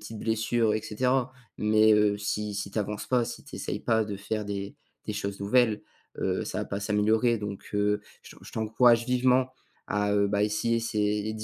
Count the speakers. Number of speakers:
one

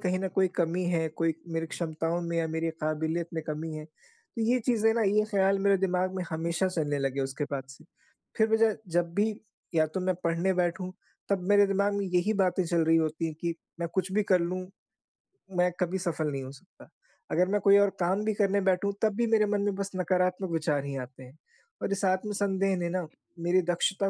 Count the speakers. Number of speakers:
one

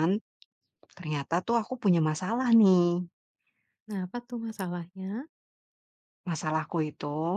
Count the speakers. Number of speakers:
two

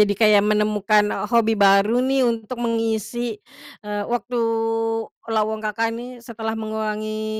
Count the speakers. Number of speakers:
one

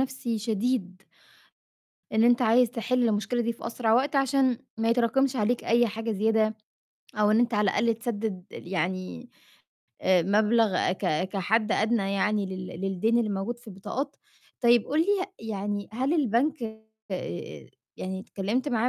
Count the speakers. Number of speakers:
one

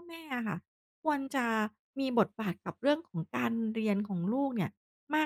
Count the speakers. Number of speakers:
one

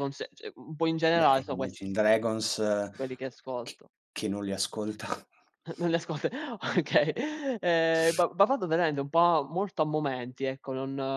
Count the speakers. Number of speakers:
two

